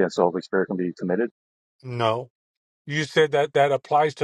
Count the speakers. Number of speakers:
2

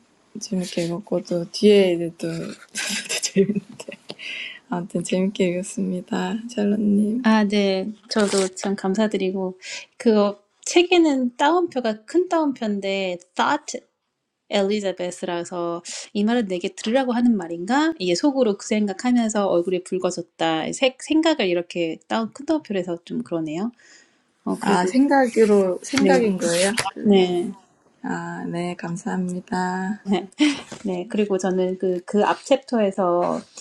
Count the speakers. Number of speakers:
2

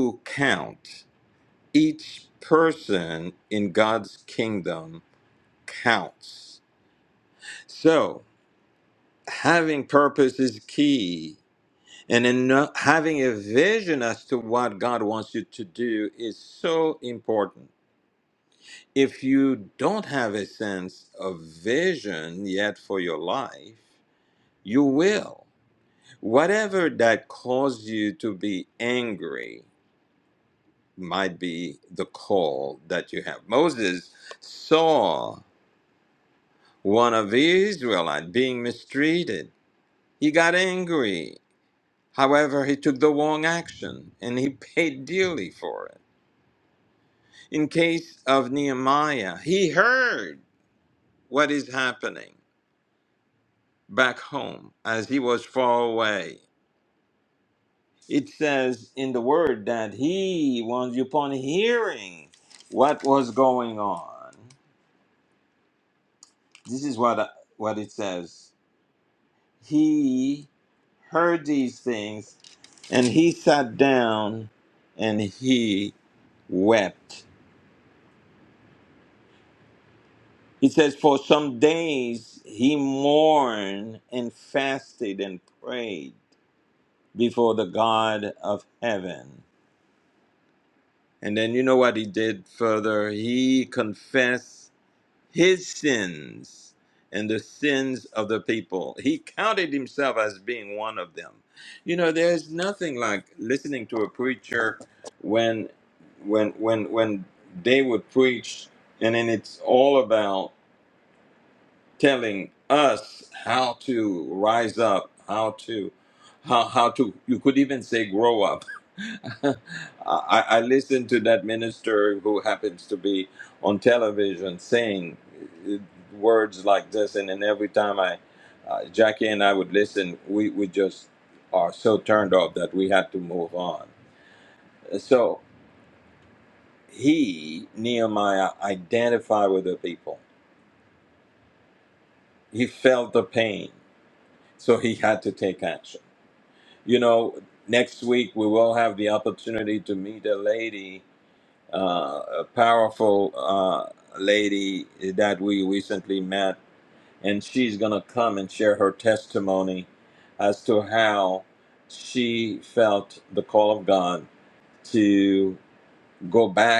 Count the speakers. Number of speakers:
1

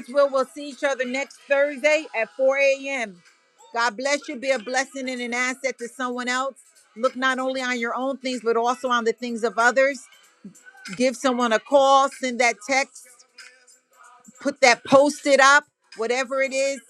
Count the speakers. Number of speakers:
1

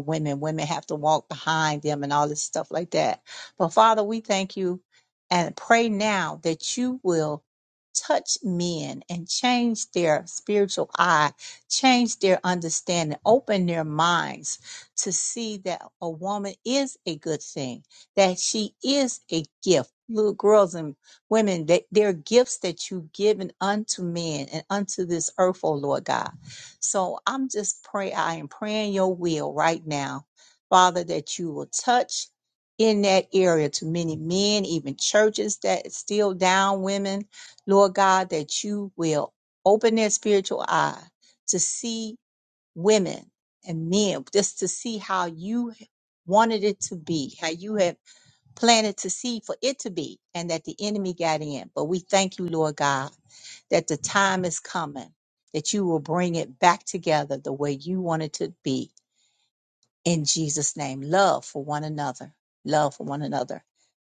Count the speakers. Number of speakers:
1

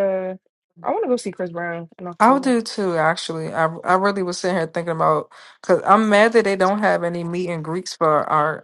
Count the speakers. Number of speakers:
2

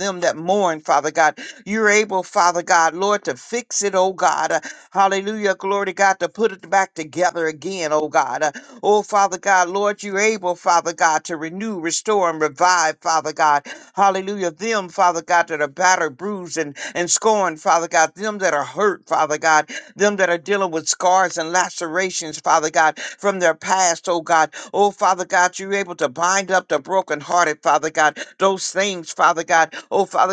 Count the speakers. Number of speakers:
1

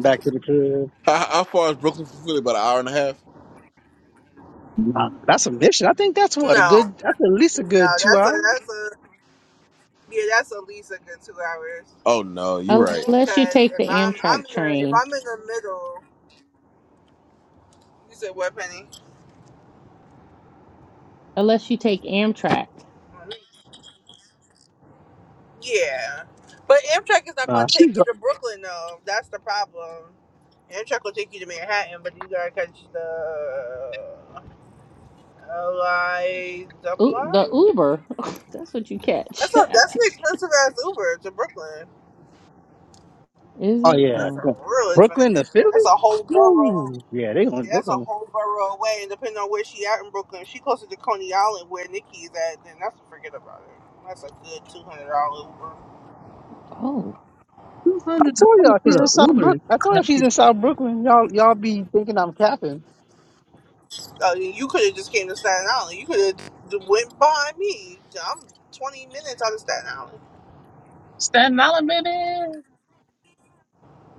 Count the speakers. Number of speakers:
5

